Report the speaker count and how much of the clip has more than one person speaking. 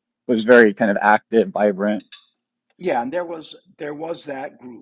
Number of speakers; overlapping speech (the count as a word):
two, no overlap